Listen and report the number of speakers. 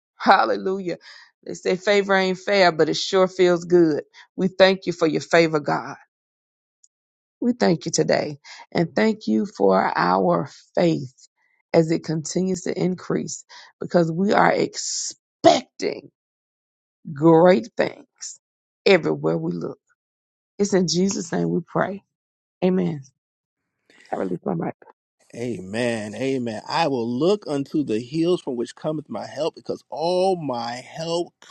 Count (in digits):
2